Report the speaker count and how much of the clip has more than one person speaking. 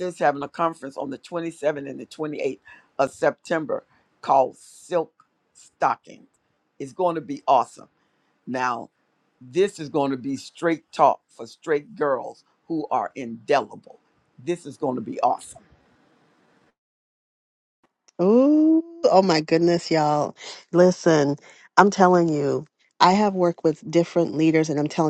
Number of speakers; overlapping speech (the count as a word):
two, no overlap